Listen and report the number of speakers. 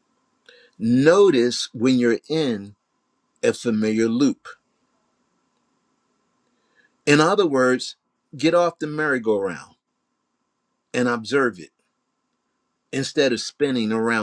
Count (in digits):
1